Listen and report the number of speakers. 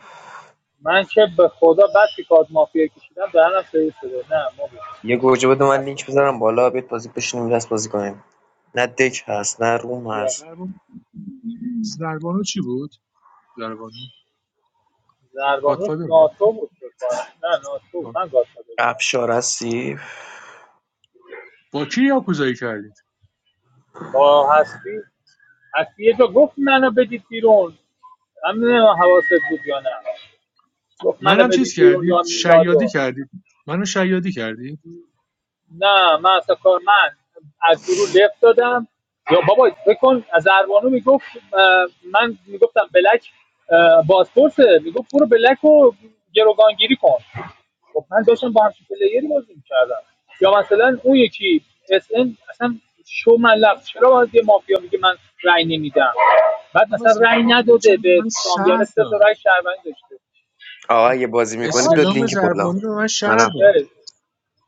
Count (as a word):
three